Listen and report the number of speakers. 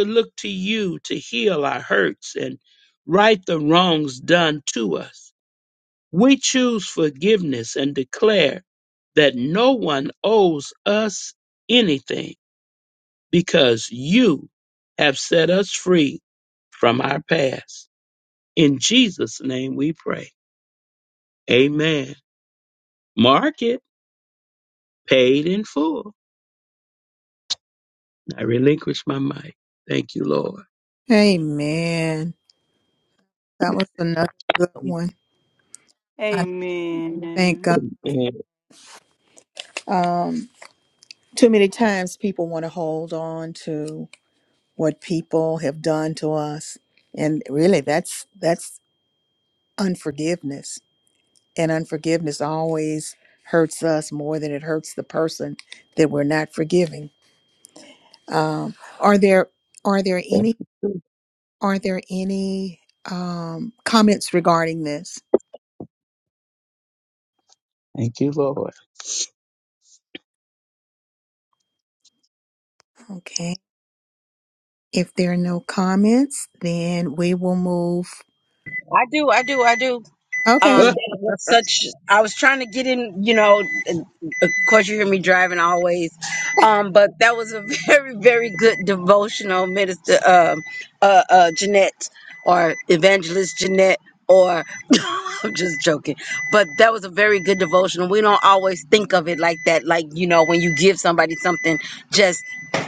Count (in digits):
4